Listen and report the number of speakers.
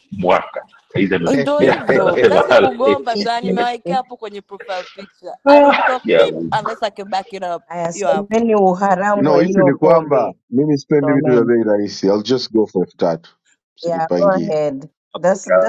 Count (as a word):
four